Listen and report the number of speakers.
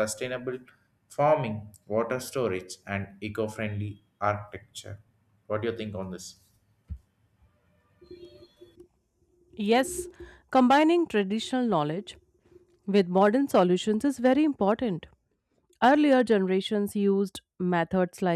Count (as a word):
two